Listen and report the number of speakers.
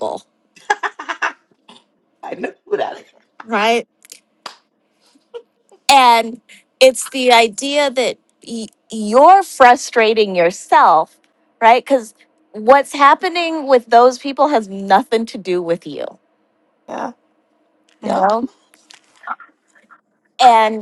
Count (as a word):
two